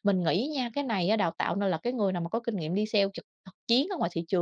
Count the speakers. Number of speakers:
one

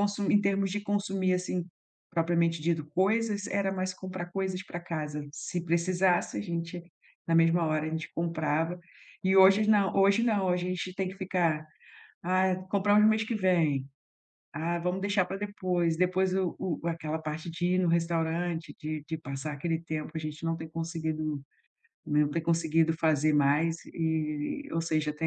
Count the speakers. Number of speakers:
one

